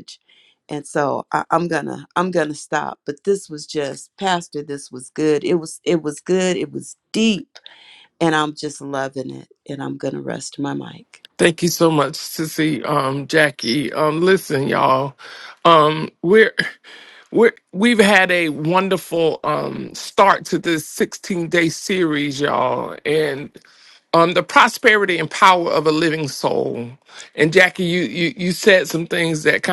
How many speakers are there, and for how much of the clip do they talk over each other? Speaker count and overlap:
2, no overlap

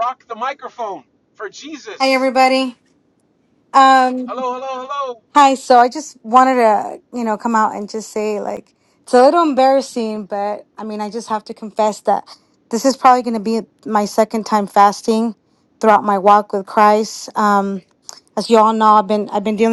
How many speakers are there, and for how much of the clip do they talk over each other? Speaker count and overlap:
2, about 1%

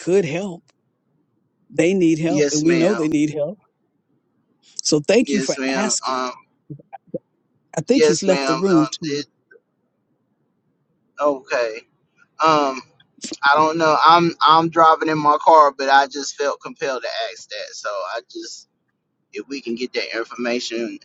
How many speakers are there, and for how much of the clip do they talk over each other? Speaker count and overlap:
2, about 14%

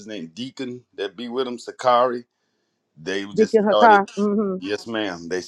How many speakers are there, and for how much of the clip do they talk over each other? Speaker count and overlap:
2, about 12%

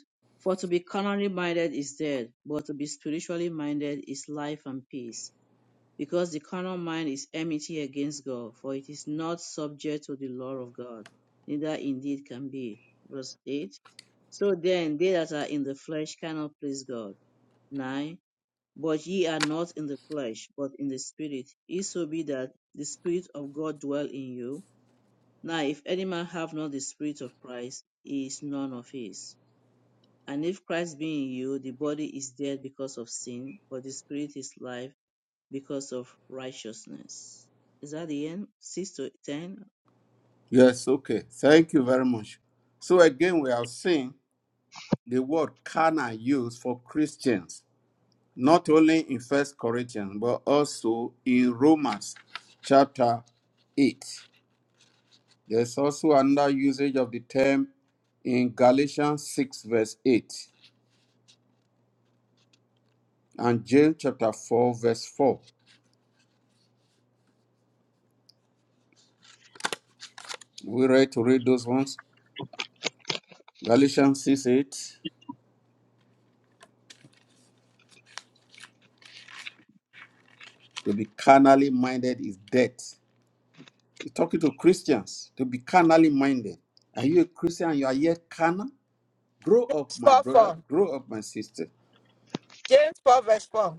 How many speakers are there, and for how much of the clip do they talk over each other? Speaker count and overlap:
3, about 1%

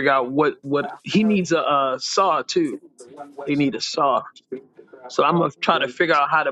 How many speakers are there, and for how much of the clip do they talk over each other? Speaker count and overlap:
1, no overlap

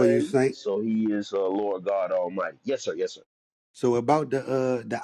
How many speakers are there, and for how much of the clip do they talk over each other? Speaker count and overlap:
2, about 11%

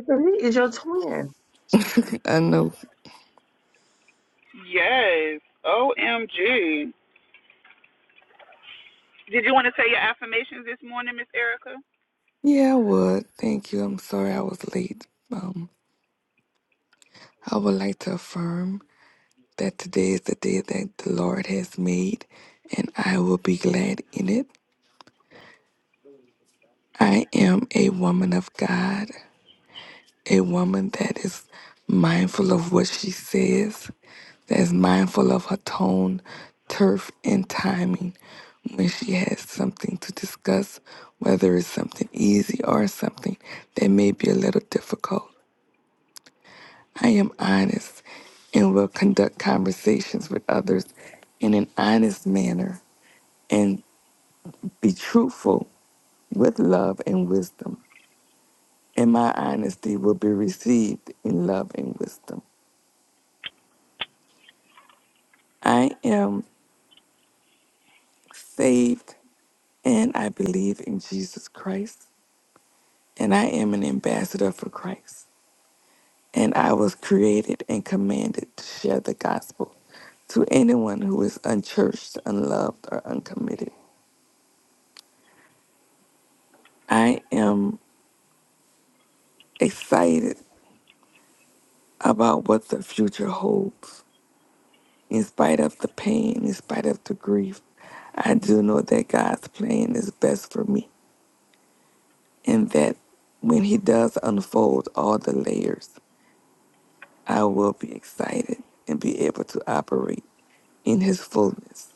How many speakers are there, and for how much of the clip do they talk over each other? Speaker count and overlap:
3, no overlap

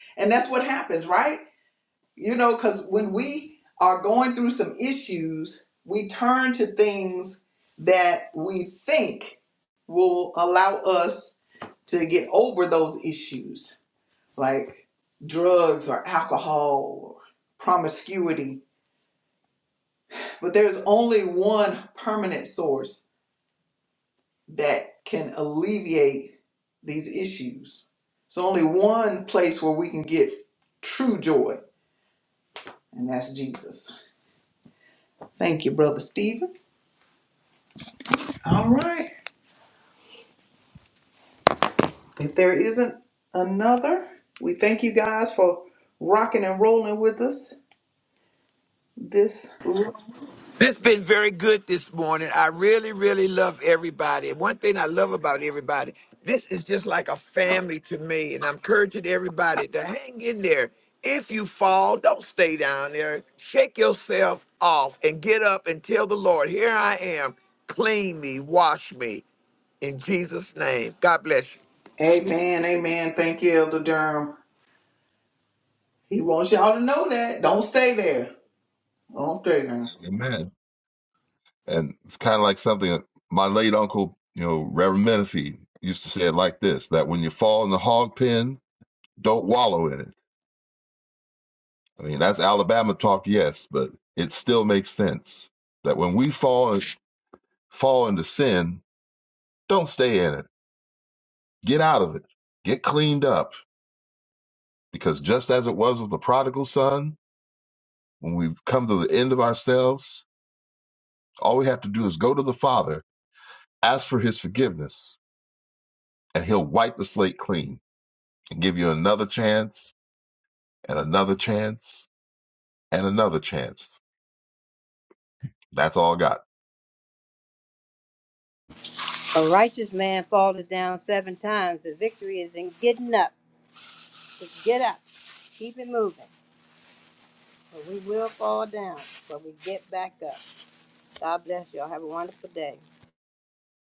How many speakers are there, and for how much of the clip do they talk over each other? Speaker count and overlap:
4, no overlap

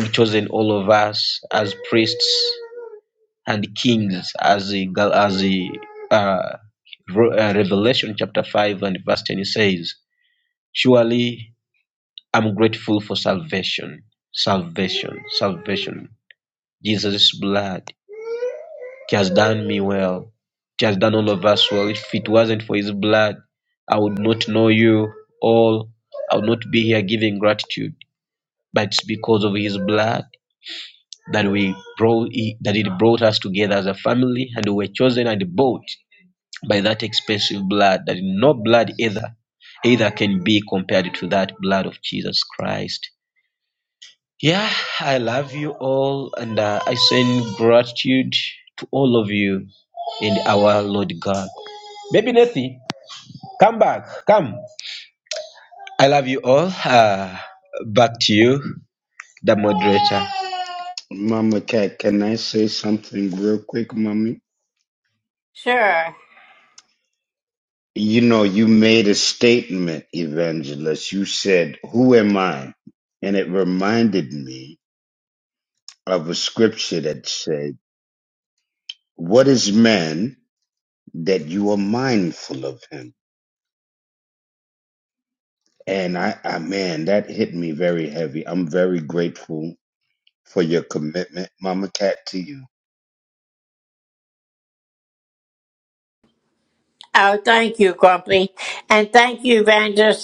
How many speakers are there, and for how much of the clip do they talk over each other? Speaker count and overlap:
3, no overlap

